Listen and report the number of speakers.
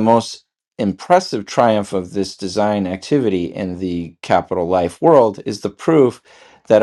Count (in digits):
1